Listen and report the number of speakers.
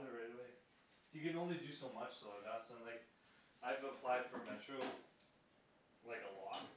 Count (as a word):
one